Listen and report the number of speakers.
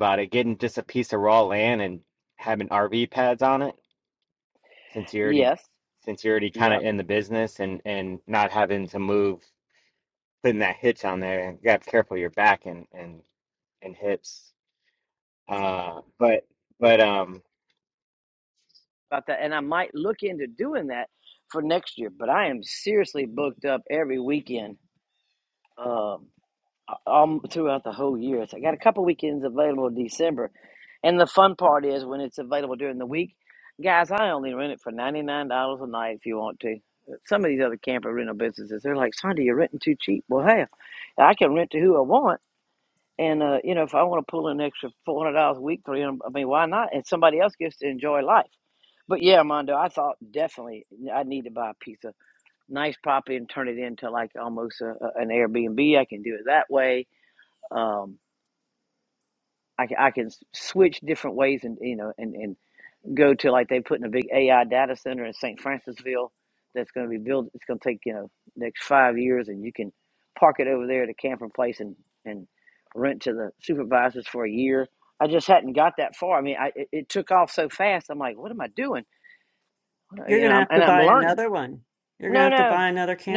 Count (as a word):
three